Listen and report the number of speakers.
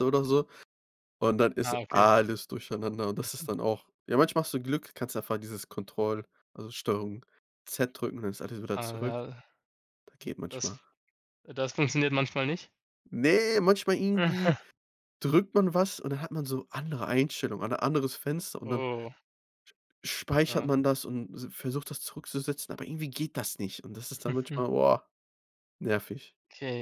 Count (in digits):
2